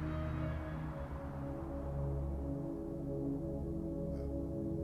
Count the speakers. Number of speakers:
0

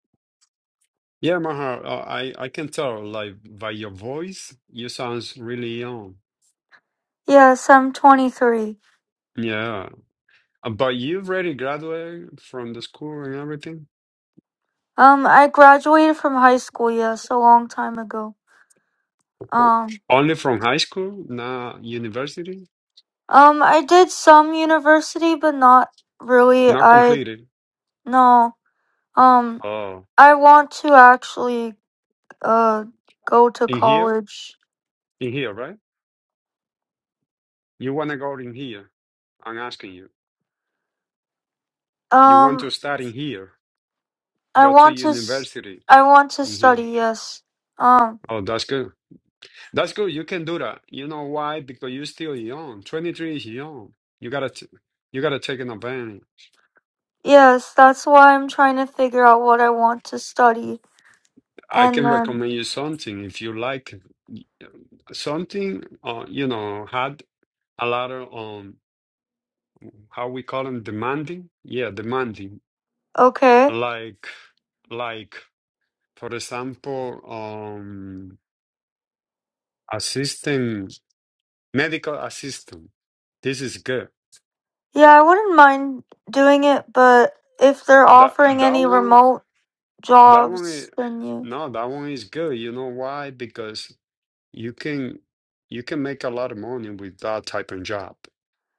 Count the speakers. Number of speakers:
2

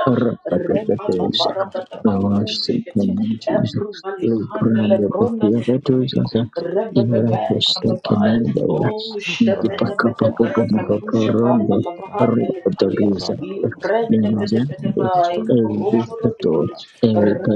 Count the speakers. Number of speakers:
3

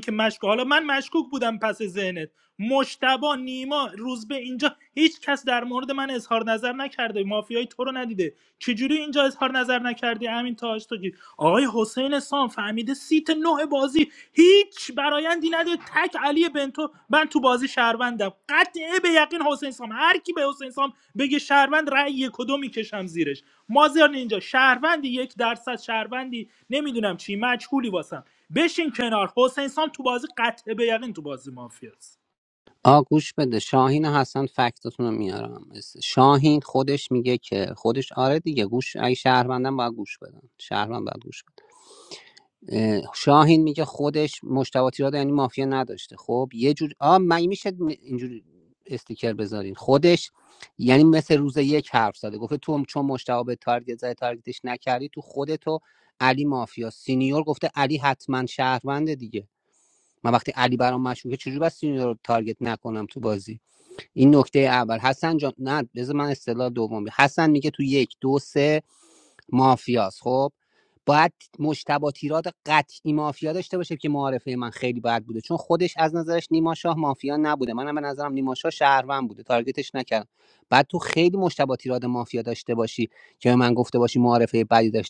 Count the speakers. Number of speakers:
2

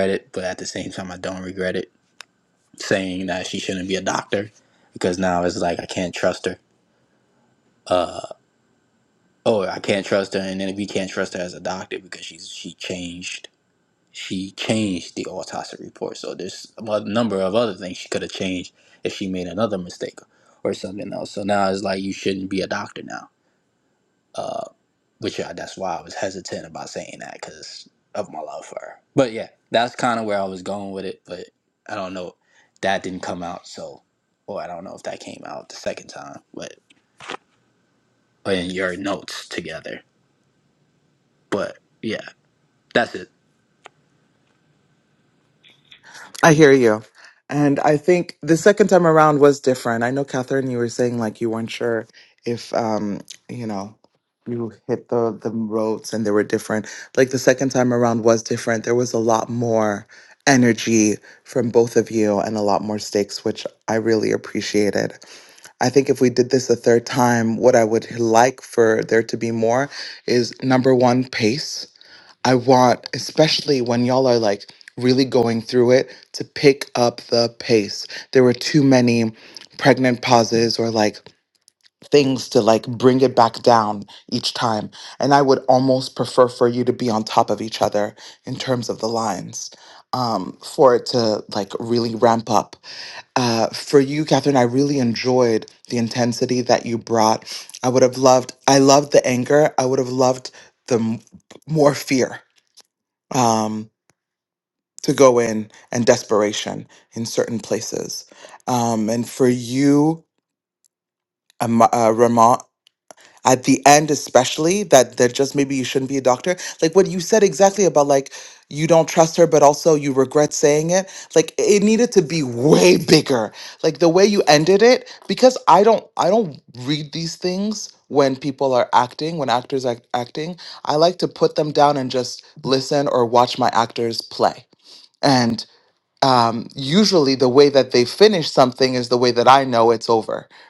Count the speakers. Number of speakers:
2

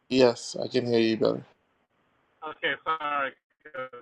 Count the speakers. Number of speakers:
2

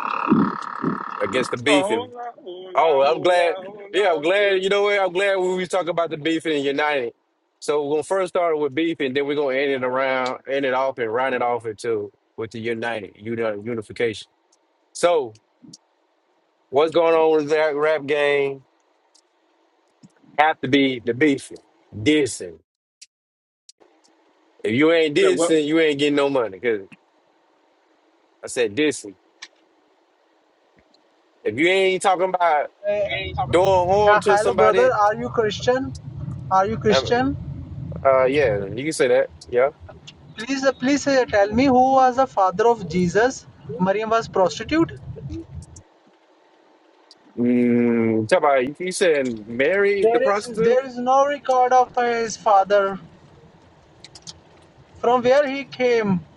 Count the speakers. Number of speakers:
3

